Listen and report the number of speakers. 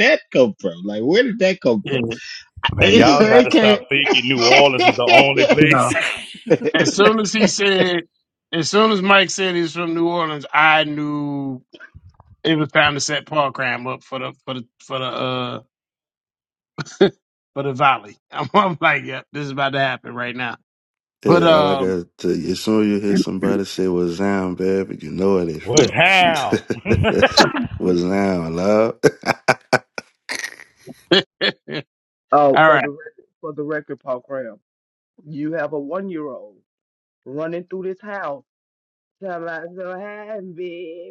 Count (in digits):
5